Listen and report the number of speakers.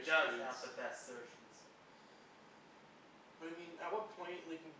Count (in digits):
2